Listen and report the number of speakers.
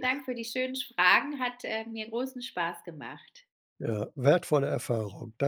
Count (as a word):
two